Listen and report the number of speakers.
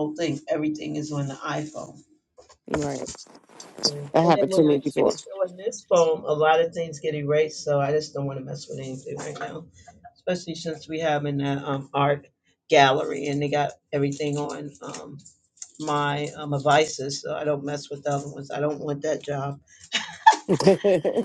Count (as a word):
two